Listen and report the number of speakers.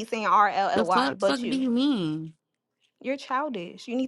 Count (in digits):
2